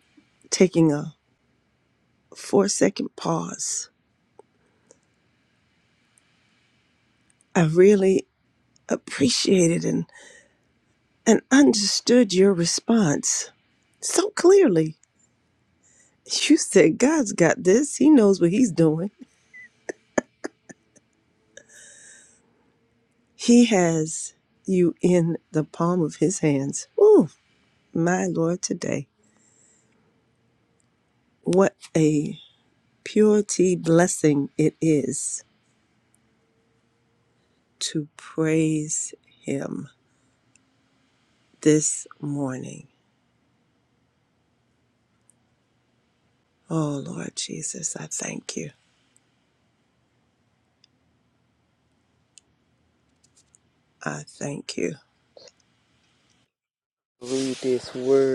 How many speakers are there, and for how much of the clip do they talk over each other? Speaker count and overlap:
two, no overlap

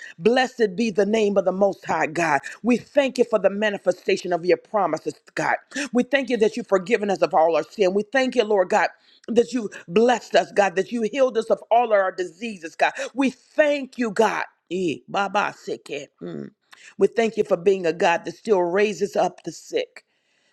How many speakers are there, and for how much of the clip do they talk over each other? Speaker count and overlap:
one, no overlap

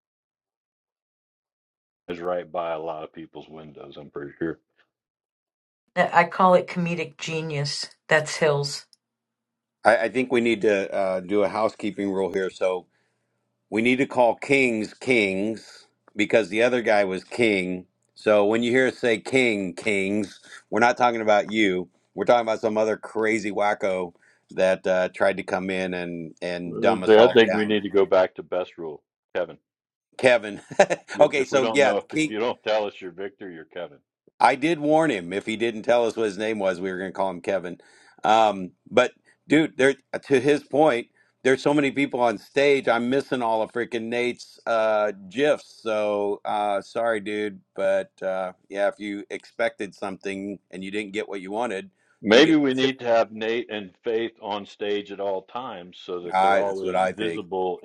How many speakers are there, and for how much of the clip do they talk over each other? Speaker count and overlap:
three, about 6%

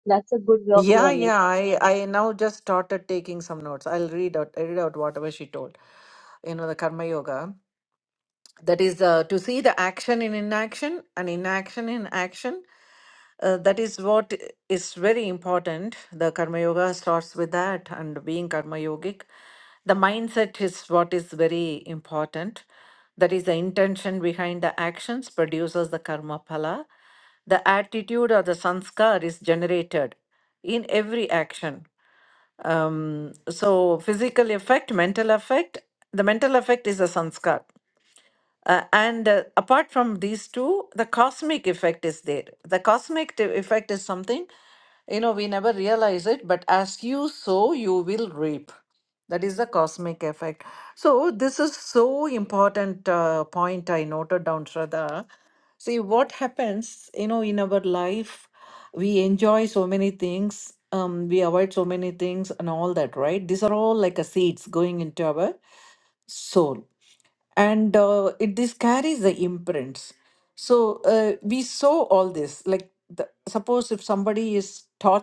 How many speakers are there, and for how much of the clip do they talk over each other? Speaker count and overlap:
two, about 1%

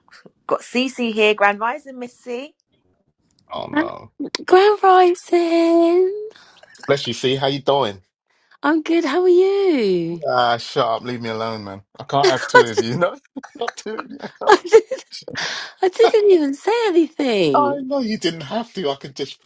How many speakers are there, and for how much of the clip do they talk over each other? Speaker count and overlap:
three, about 5%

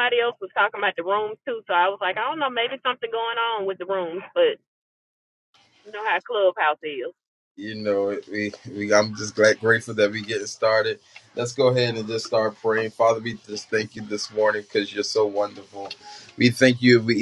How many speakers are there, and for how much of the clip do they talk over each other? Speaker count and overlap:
two, no overlap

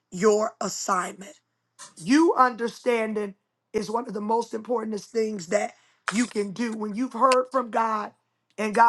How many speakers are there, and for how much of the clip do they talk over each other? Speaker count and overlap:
one, no overlap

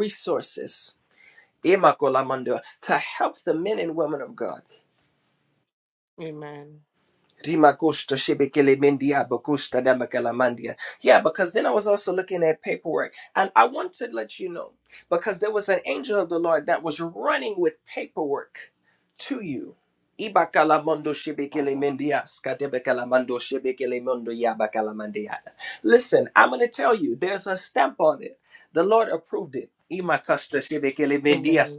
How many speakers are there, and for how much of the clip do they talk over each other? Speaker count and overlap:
two, about 3%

